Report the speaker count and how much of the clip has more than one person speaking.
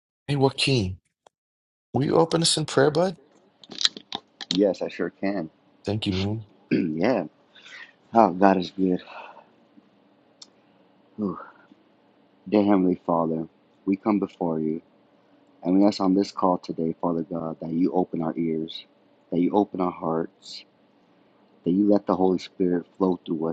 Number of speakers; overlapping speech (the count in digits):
2, no overlap